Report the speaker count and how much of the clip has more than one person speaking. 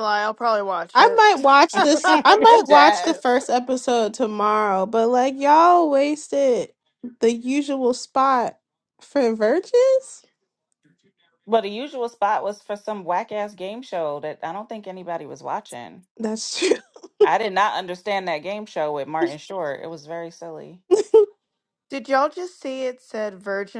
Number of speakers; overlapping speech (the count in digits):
3, about 4%